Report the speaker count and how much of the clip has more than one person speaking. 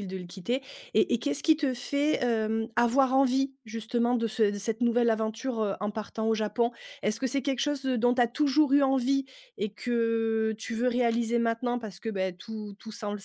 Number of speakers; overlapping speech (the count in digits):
1, no overlap